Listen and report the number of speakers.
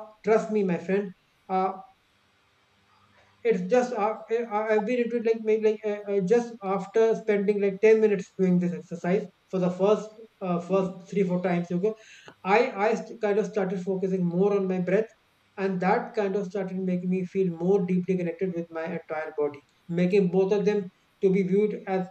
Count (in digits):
1